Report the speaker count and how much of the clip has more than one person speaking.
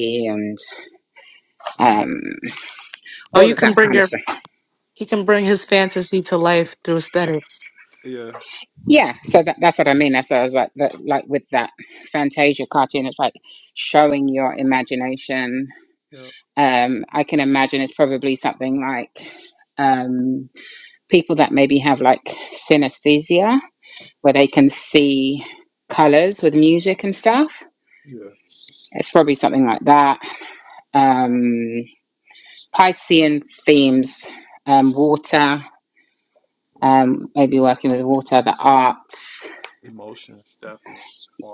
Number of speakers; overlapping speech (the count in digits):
3, about 2%